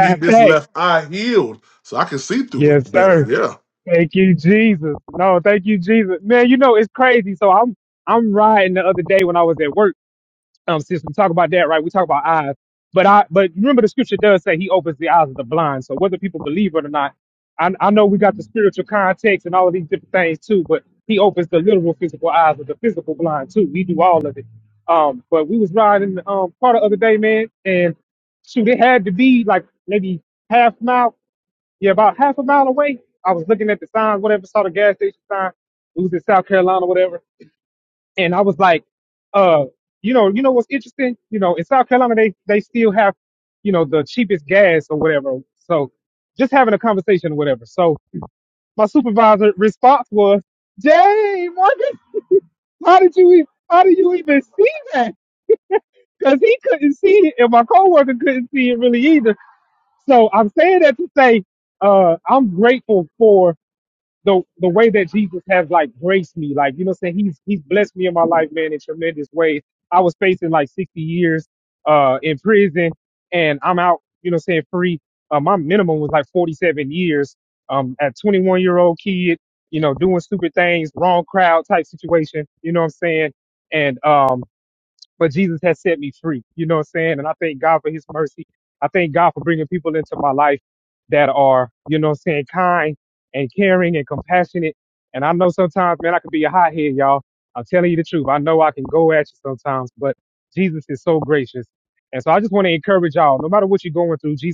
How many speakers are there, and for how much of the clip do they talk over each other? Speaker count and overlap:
two, about 1%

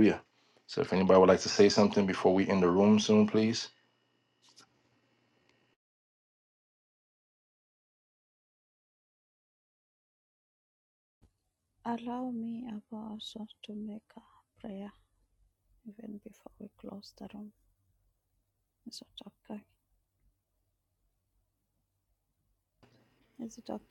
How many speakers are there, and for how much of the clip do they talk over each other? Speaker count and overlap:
two, no overlap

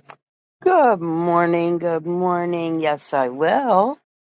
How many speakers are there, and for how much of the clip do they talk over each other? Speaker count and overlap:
one, no overlap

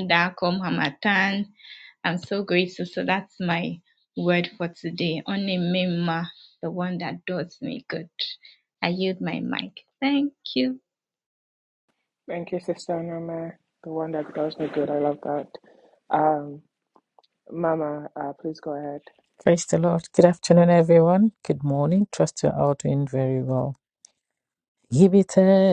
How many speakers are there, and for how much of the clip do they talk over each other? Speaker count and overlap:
three, no overlap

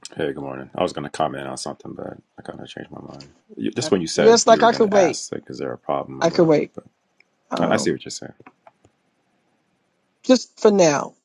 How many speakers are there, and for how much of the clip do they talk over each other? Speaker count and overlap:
two, about 16%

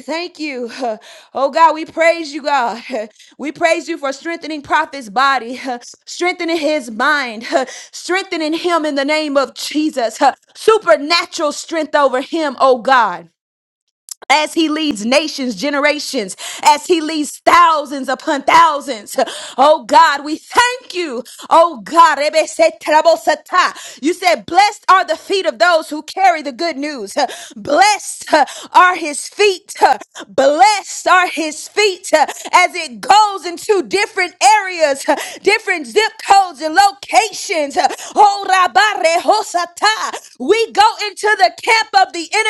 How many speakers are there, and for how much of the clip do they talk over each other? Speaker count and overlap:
one, no overlap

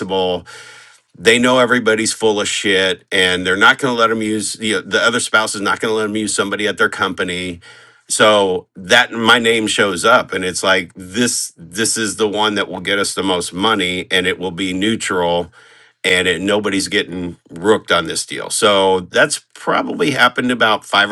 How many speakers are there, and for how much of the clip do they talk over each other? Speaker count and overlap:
one, no overlap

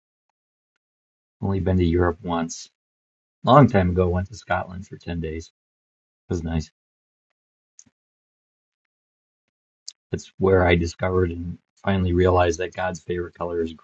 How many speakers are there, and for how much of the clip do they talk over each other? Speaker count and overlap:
one, no overlap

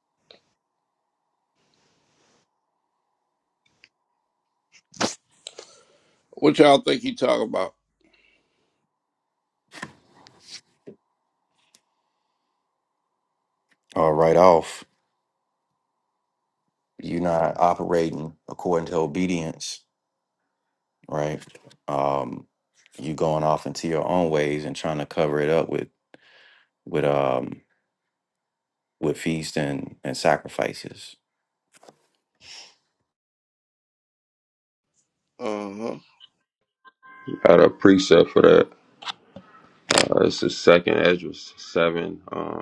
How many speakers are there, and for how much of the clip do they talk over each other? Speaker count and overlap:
three, no overlap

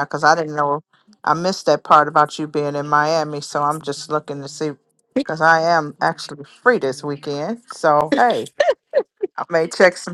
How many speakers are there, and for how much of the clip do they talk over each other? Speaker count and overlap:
one, no overlap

